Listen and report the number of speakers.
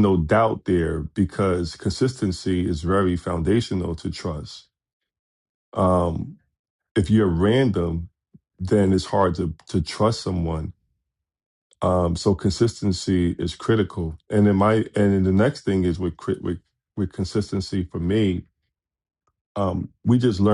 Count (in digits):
1